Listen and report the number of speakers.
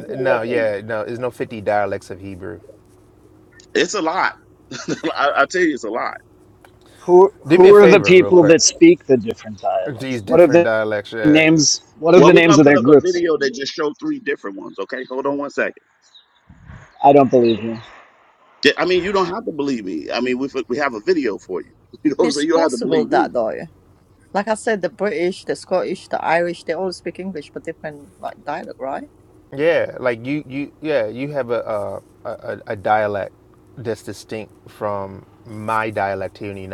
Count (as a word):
four